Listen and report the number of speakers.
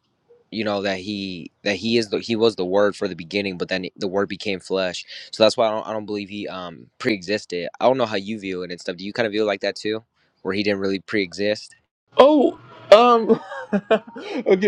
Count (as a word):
two